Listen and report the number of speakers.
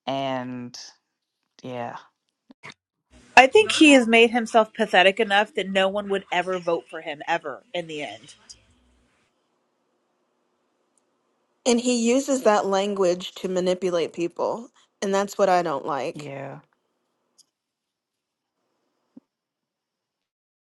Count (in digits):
3